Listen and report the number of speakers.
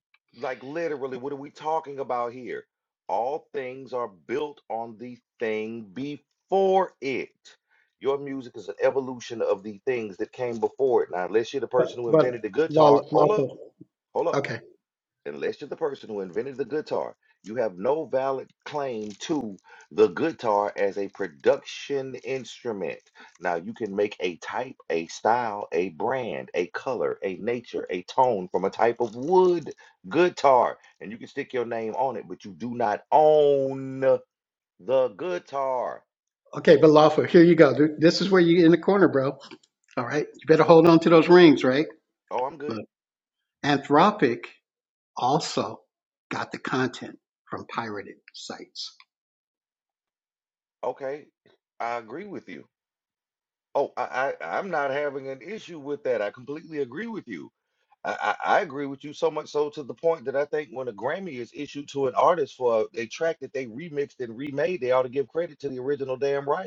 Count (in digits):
2